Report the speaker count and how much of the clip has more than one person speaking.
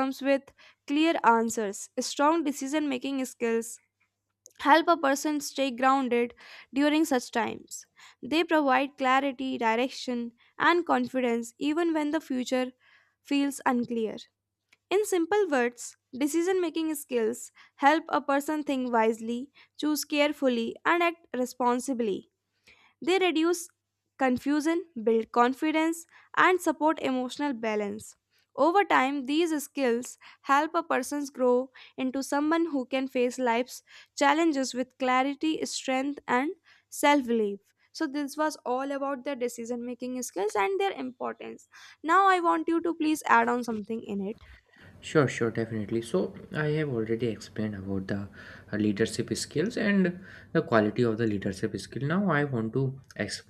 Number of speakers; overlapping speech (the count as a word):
two, no overlap